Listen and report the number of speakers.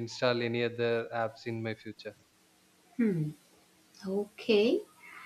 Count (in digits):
2